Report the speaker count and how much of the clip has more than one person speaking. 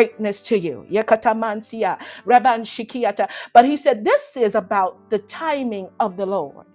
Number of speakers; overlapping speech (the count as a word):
one, no overlap